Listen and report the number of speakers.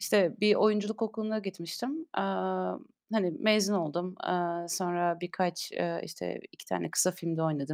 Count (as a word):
one